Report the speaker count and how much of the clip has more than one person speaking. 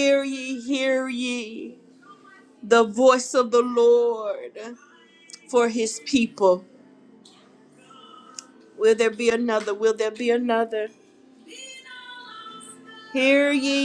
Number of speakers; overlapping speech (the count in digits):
1, no overlap